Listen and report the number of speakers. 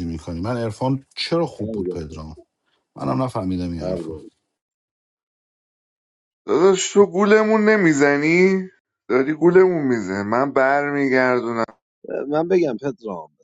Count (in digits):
3